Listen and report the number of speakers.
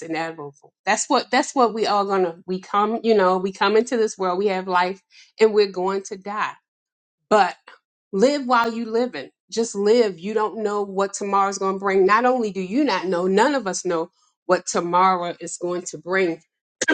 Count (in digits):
1